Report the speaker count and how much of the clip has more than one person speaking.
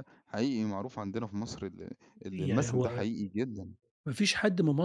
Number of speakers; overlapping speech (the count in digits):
2, about 15%